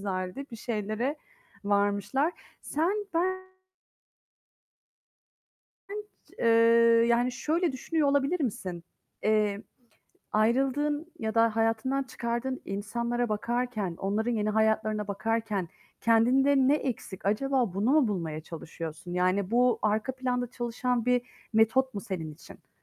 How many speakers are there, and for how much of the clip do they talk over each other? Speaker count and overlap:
1, no overlap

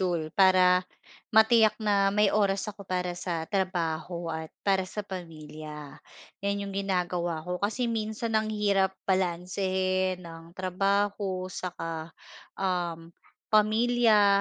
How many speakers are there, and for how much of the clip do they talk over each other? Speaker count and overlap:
1, no overlap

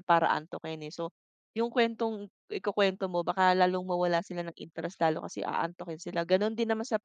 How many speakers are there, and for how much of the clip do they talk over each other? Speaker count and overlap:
1, no overlap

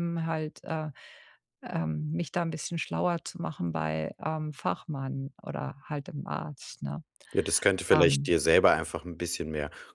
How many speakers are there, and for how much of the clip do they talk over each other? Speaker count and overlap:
2, about 4%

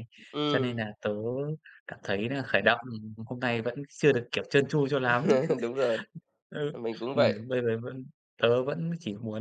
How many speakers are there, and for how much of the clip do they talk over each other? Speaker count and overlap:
2, about 6%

